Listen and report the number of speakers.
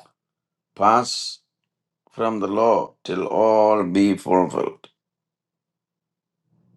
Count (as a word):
one